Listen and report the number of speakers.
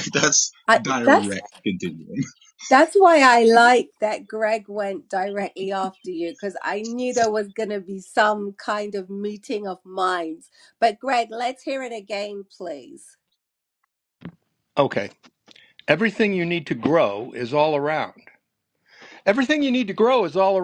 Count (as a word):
three